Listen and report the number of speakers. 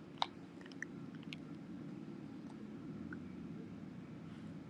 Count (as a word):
zero